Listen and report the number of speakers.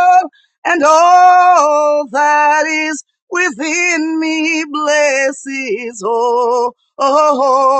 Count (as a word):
one